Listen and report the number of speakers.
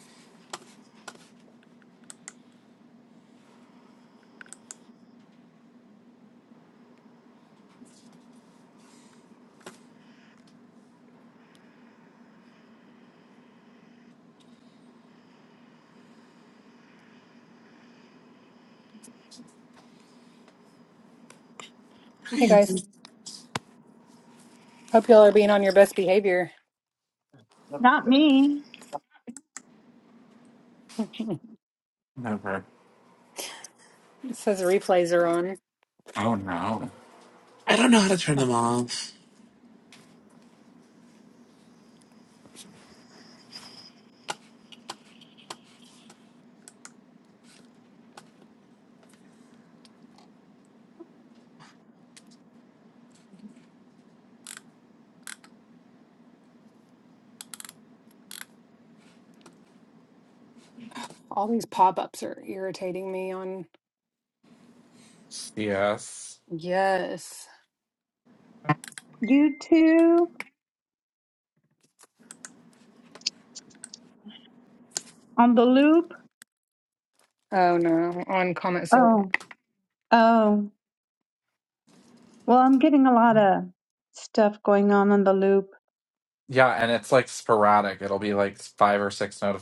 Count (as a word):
four